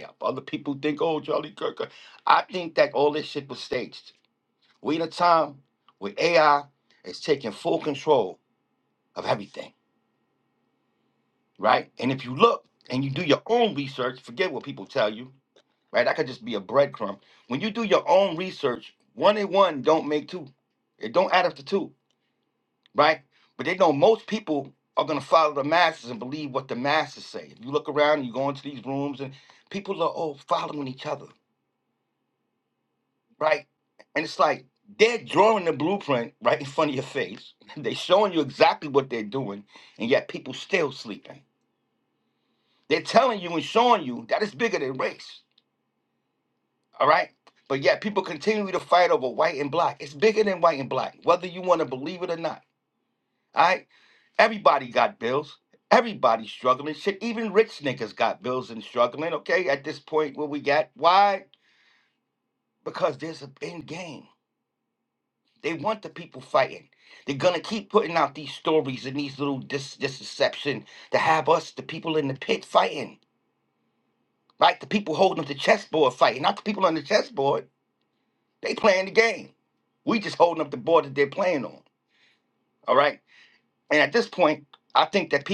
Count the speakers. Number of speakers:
1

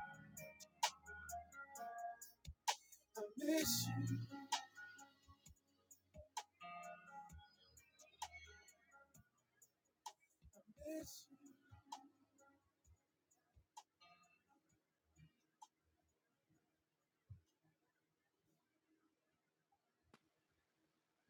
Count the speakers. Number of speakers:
0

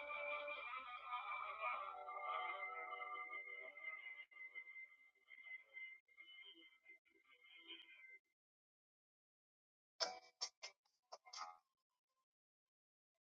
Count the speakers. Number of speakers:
0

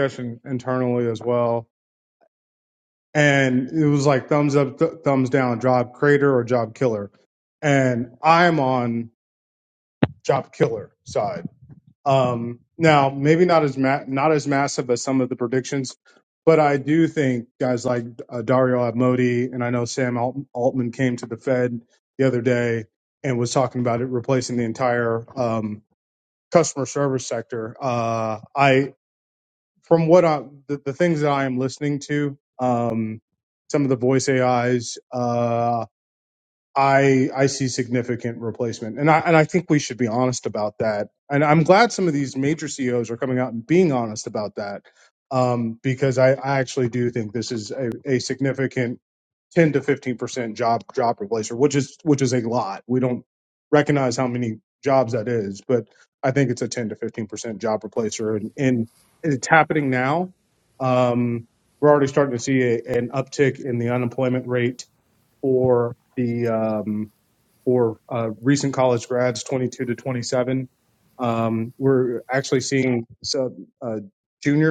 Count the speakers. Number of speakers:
1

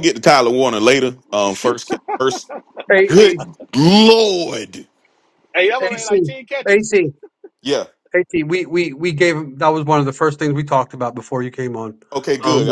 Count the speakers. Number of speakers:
3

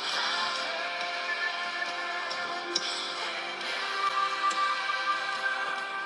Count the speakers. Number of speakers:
0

